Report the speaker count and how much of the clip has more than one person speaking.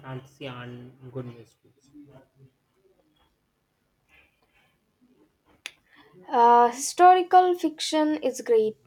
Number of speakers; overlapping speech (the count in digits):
2, no overlap